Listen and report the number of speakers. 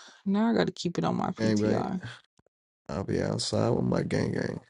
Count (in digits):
2